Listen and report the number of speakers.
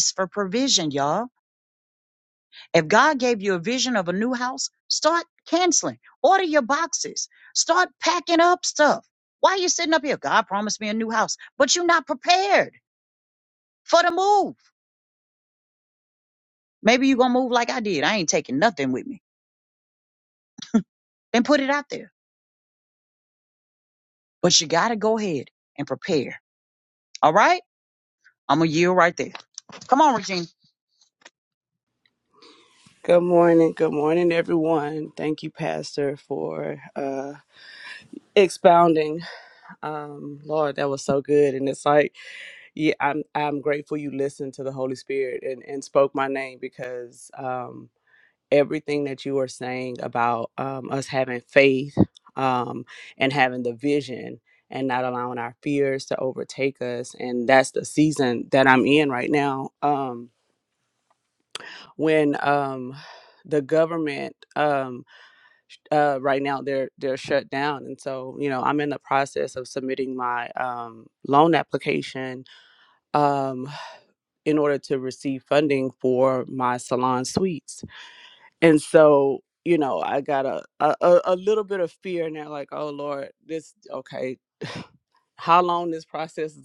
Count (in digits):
2